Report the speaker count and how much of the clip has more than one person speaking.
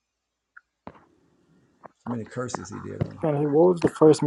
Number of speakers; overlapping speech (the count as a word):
two, about 1%